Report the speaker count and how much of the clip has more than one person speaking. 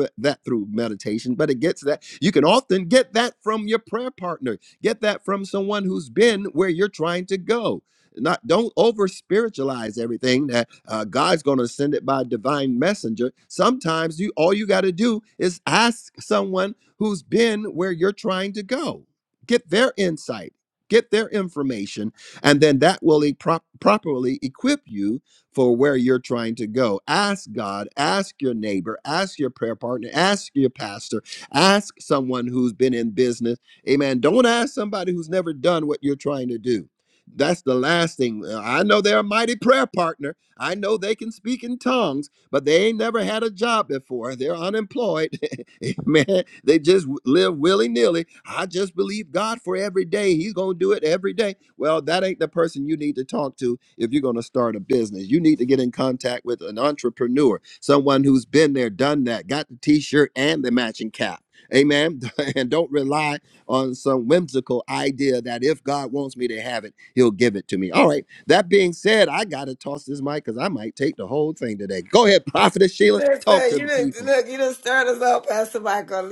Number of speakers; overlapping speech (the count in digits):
2, about 1%